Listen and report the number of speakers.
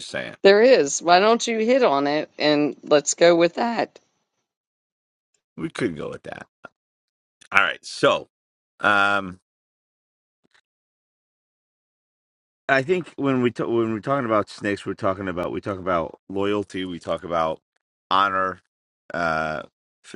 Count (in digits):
2